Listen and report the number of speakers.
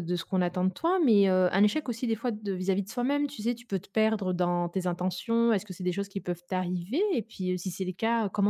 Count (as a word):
one